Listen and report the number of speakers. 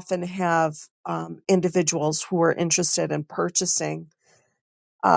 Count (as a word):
one